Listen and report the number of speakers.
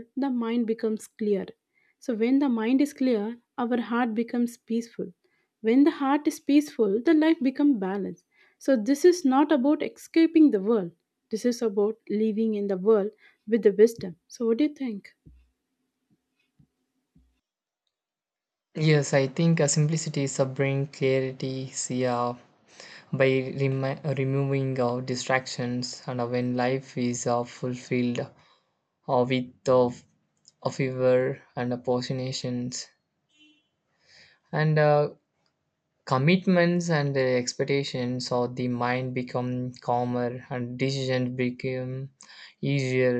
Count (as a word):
two